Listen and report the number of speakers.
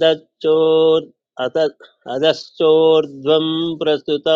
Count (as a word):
one